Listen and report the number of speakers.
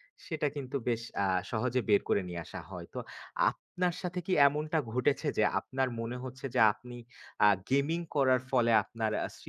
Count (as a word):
one